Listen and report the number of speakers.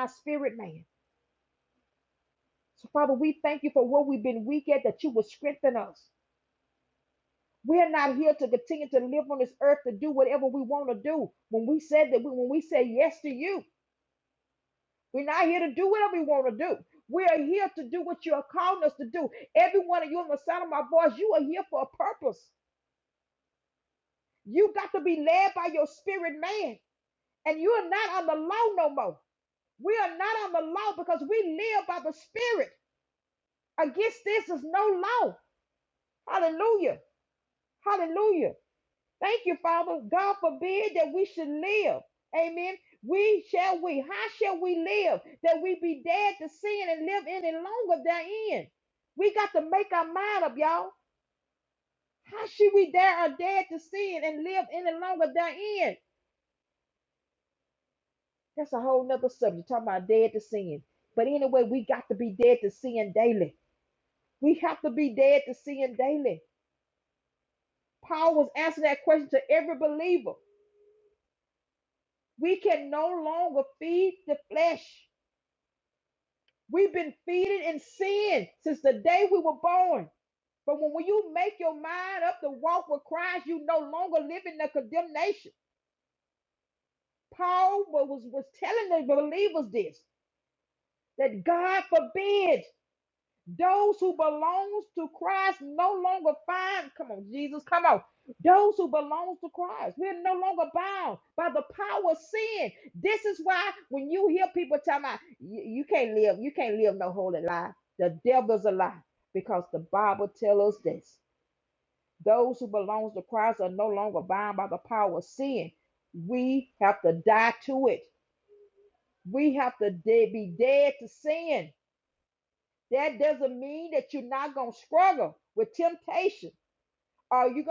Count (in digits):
1